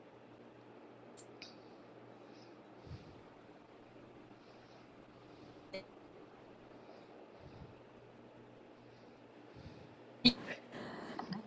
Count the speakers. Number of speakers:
zero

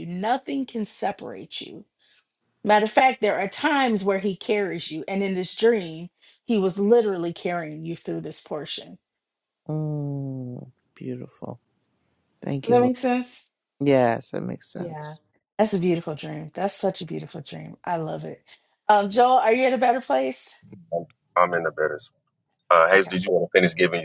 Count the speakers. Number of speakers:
three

